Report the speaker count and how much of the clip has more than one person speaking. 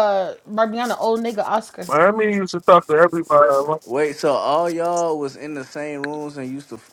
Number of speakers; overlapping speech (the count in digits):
3, no overlap